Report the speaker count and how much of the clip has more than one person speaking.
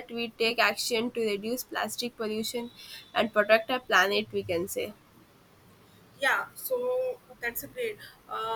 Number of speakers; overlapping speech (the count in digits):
2, no overlap